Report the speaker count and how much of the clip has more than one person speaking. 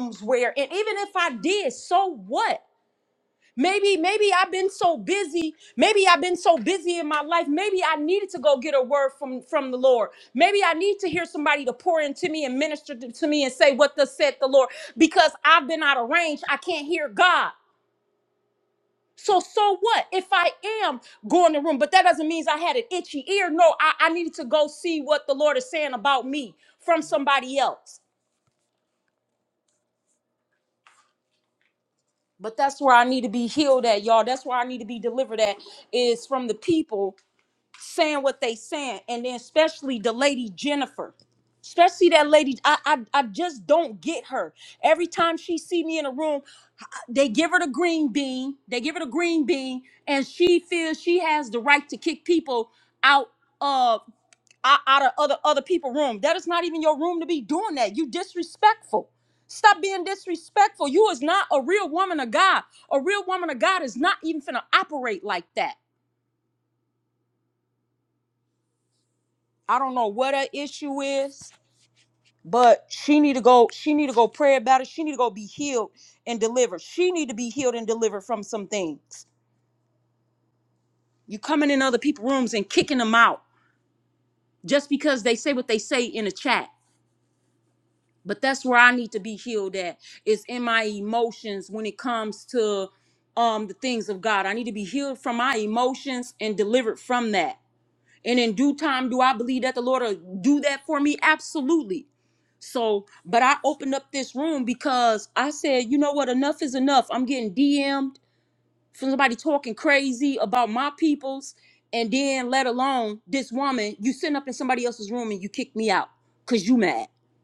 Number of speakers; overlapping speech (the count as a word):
one, no overlap